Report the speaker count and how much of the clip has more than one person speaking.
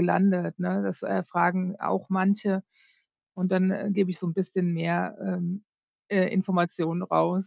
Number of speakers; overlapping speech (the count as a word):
one, no overlap